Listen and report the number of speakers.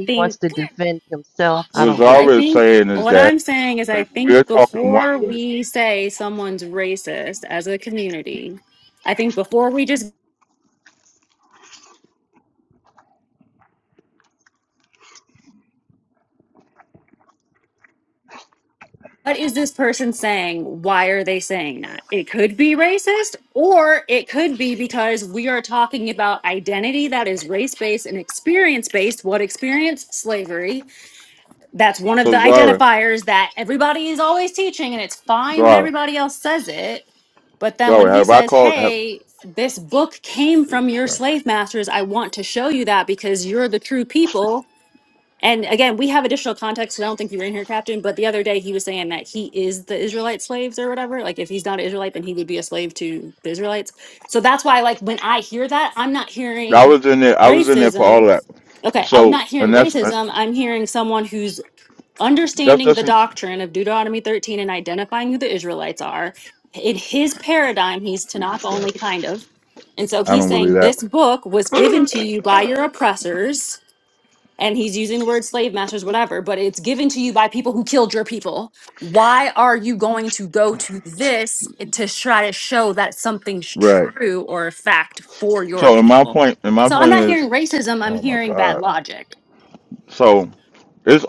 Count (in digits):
3